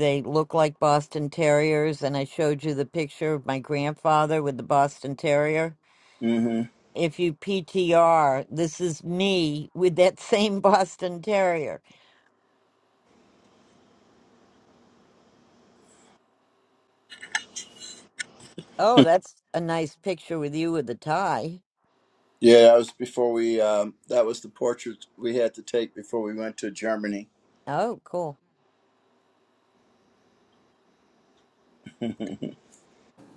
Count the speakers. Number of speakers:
two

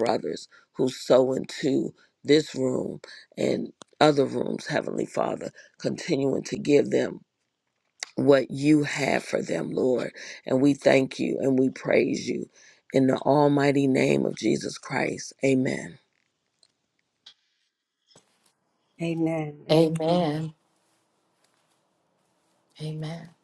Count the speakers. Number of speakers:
three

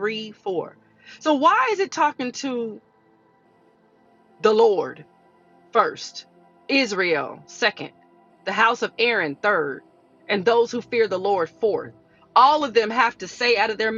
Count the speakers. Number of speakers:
one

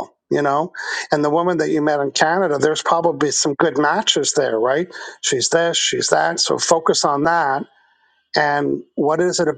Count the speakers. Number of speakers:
one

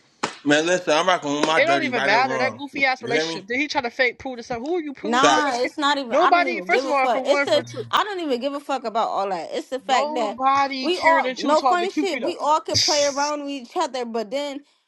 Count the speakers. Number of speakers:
three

